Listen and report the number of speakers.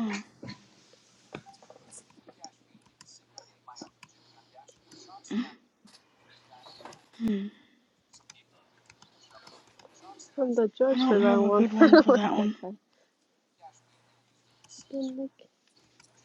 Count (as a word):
two